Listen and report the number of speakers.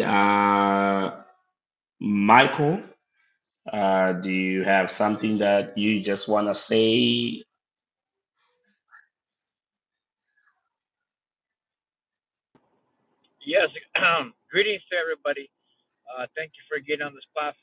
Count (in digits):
2